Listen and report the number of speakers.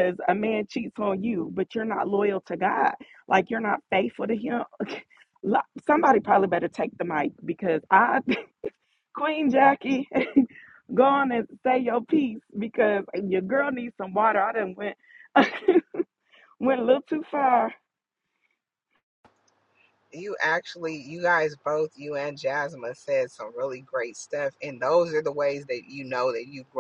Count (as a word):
two